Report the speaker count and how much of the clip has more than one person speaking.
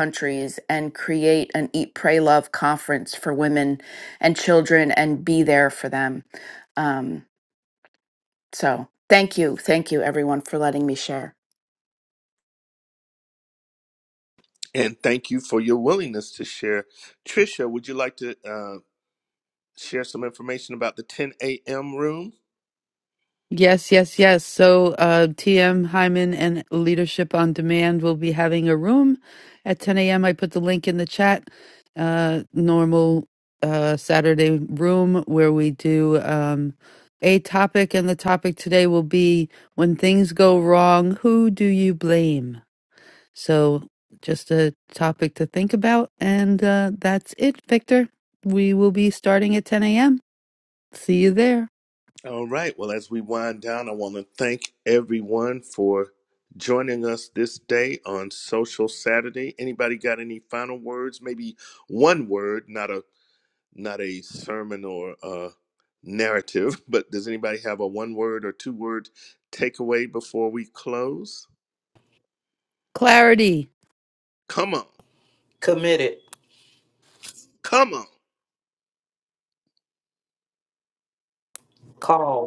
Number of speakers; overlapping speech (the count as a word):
four, no overlap